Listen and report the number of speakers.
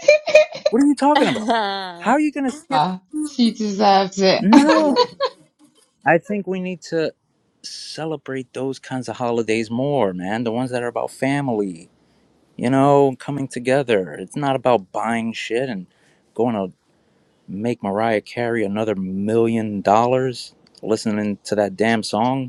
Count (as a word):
three